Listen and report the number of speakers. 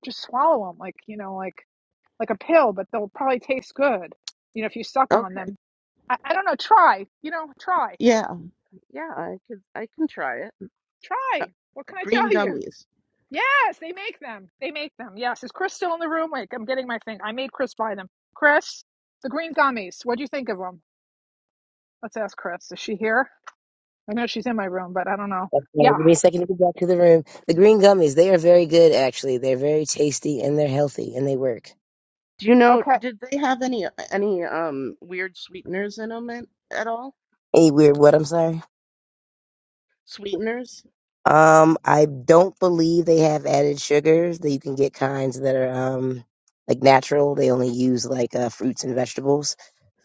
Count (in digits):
3